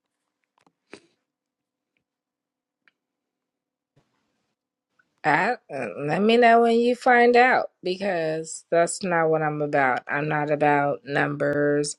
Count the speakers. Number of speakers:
1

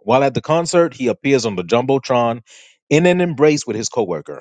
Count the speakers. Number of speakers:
1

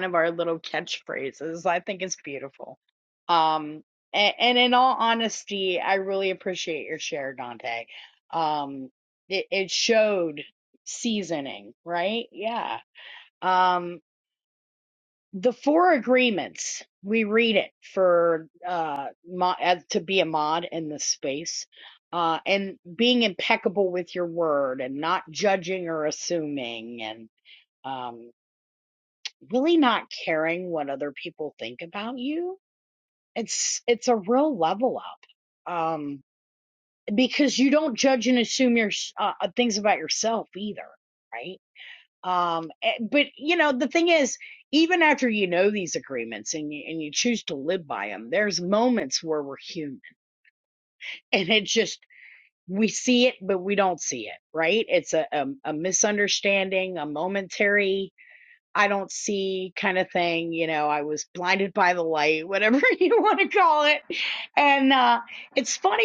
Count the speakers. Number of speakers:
1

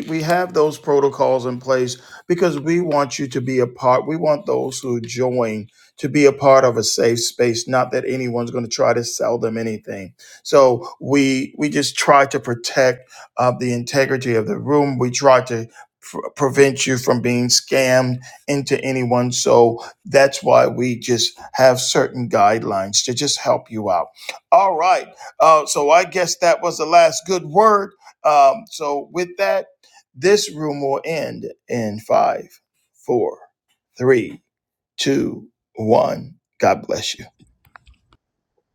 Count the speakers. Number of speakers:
1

